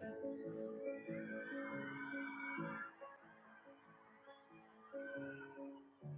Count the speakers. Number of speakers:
0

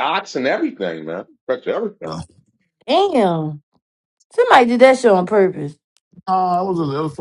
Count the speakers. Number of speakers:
3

